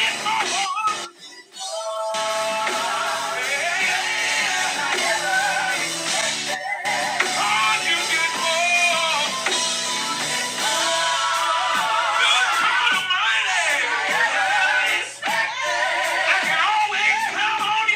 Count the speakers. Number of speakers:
zero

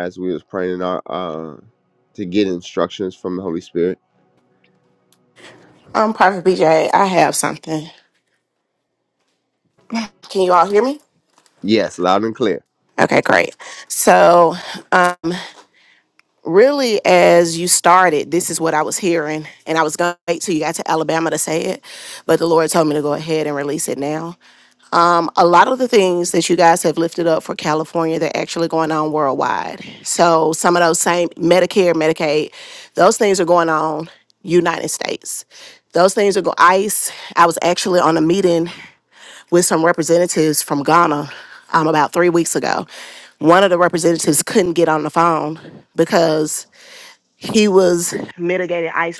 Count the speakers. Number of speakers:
two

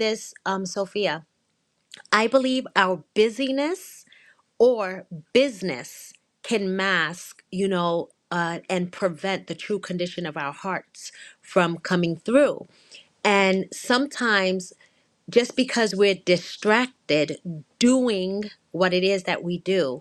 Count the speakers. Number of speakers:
one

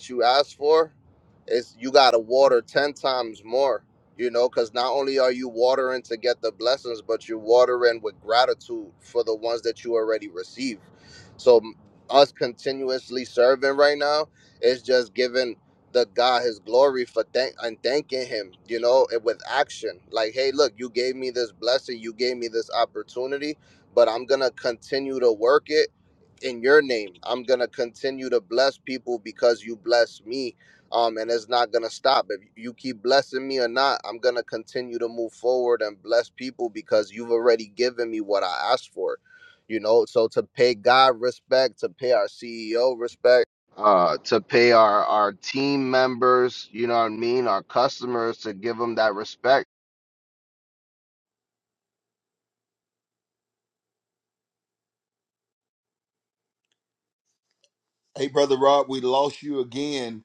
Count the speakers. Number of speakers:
two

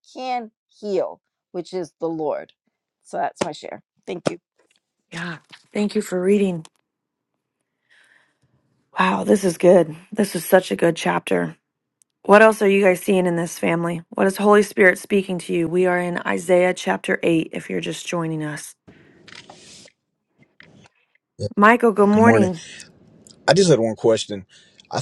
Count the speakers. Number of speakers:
three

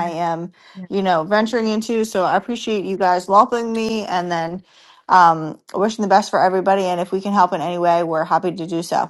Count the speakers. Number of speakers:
one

